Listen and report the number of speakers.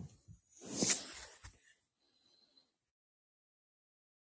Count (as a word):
zero